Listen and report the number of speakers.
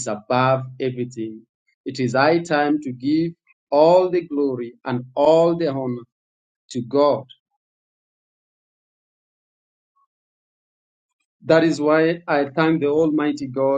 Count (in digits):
1